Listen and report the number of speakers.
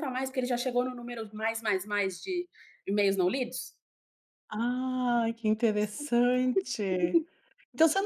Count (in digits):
2